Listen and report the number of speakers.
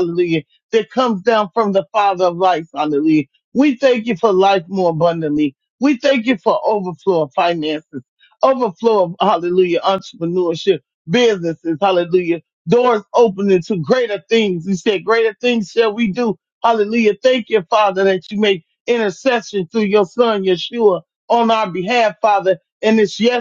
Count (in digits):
1